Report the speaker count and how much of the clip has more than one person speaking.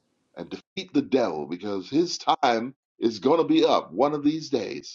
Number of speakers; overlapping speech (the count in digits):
1, no overlap